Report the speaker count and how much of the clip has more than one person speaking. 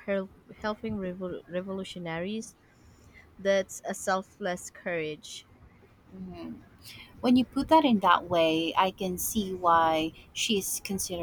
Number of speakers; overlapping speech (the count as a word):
two, no overlap